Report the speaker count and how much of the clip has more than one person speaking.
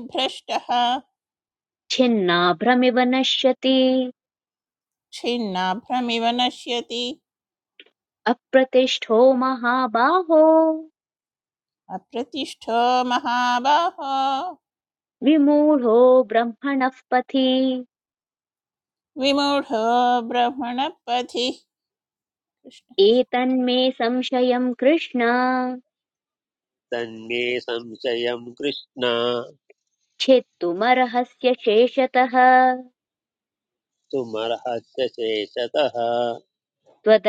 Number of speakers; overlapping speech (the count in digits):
3, no overlap